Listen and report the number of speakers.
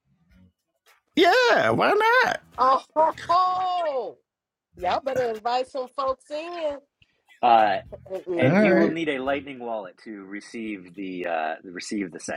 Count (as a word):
three